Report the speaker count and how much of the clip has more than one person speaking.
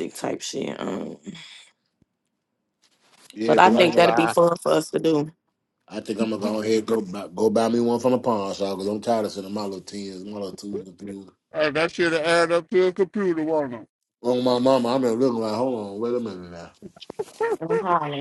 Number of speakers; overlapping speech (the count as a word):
three, about 5%